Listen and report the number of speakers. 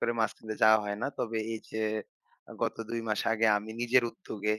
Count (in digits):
1